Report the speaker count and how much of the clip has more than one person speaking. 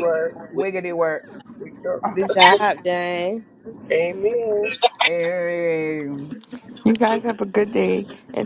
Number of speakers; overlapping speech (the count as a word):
four, no overlap